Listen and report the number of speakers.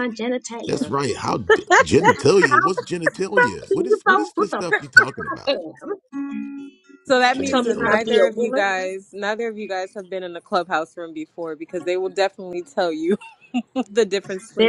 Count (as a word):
three